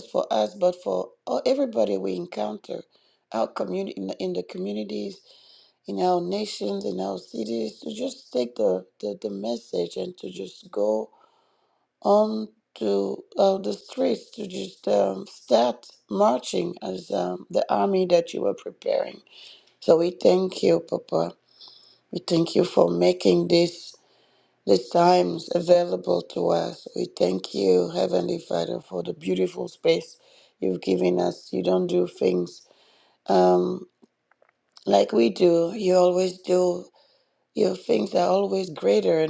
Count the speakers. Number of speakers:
one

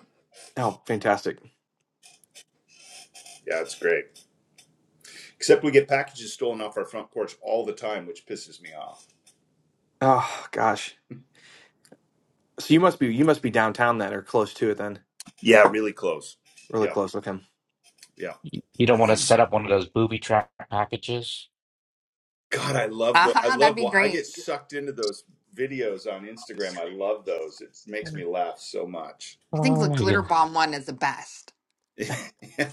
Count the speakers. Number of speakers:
four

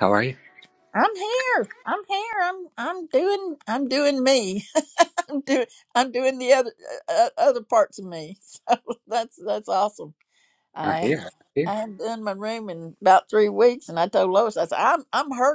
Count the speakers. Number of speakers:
two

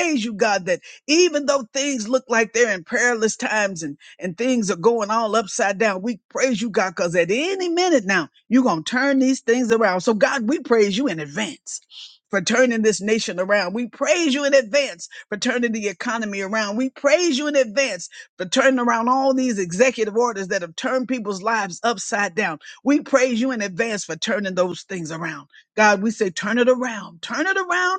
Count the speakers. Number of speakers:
one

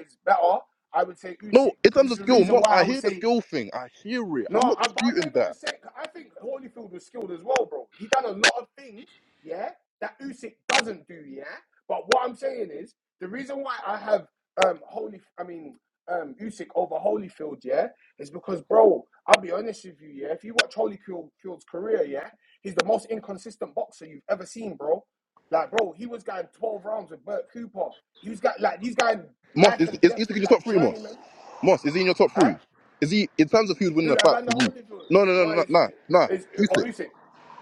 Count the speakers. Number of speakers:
two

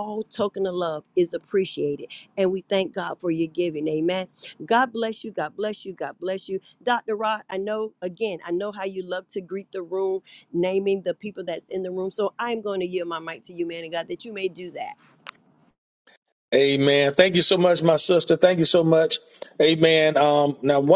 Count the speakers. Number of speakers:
two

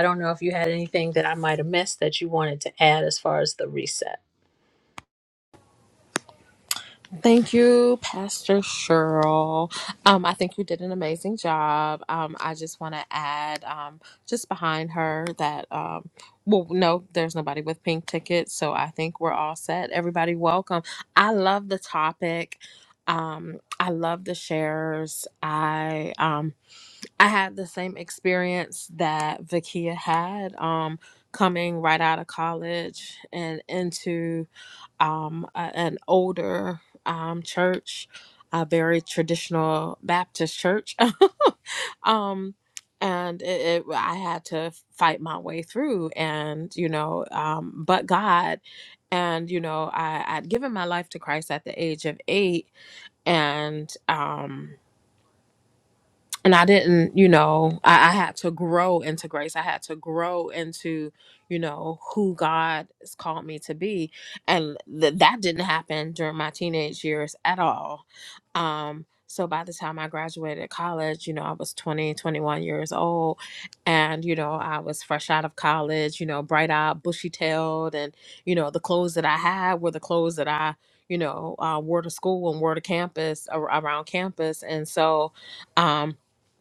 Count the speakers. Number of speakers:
two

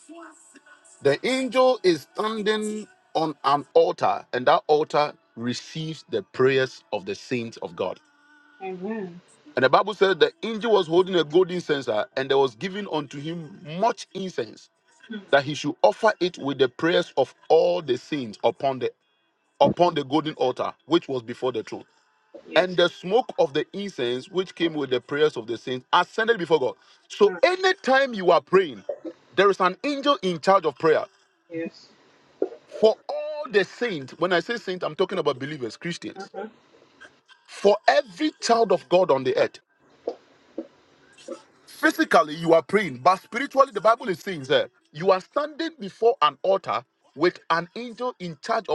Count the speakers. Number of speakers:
two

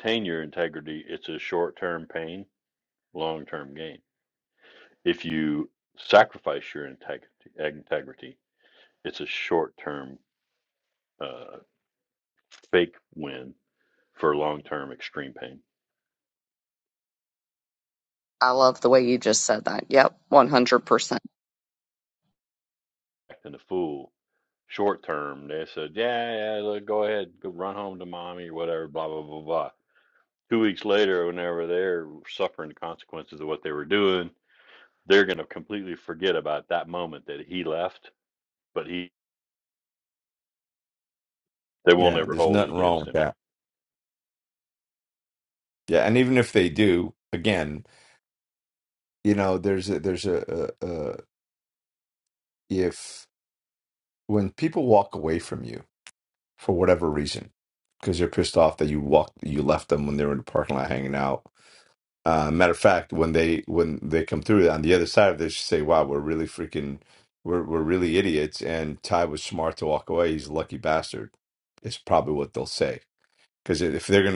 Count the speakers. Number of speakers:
three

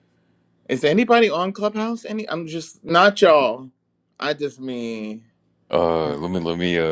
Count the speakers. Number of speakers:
two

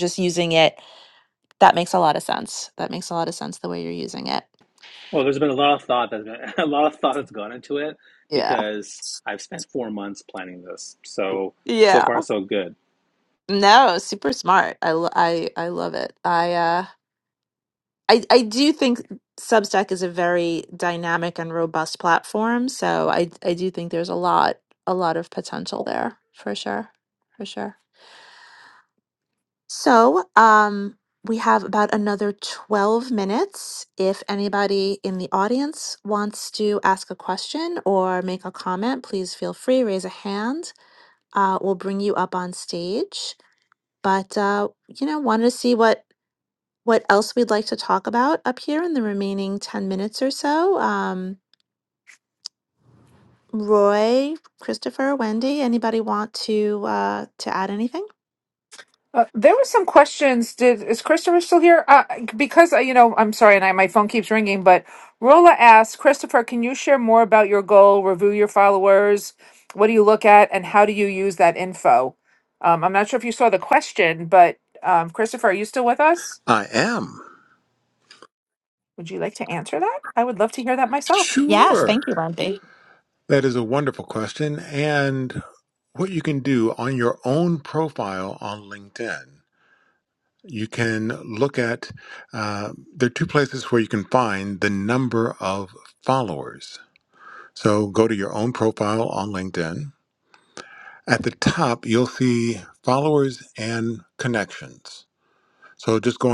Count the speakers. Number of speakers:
four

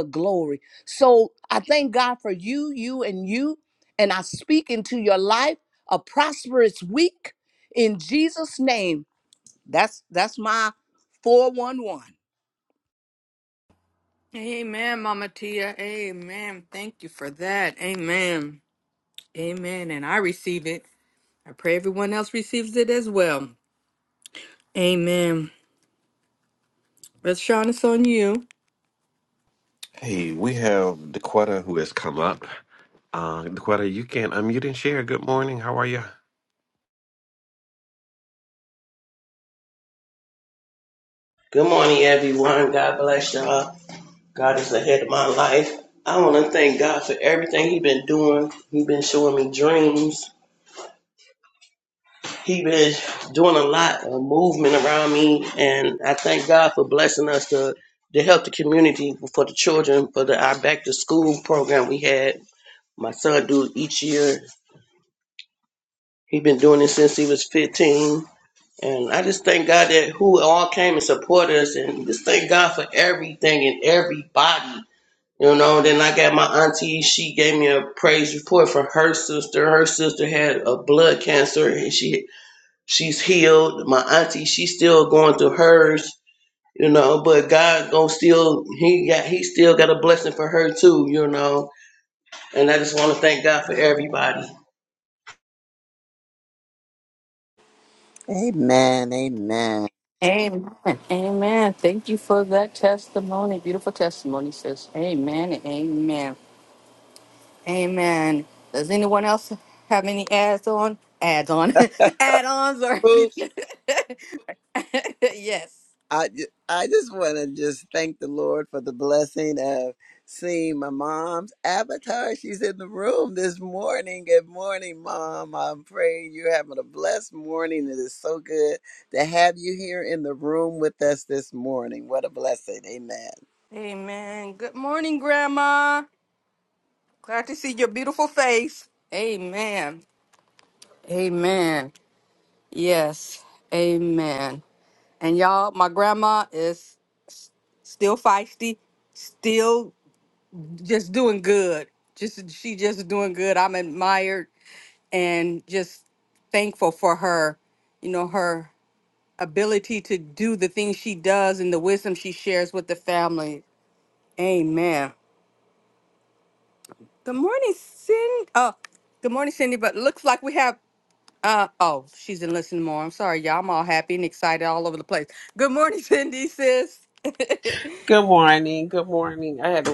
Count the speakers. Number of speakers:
six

